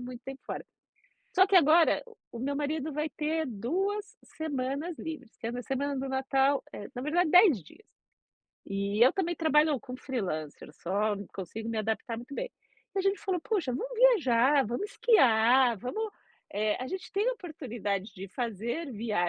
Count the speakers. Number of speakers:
one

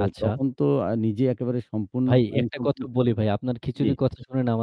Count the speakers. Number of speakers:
two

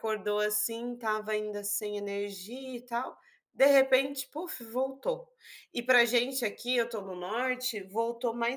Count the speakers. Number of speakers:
one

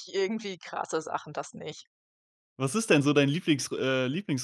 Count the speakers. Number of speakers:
two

